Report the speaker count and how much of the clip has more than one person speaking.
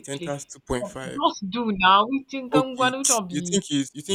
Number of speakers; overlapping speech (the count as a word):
two, about 28%